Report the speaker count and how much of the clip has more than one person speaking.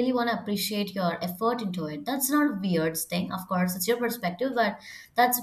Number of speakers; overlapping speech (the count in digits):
1, no overlap